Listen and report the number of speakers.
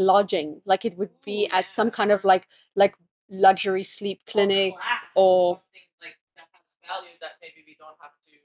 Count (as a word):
two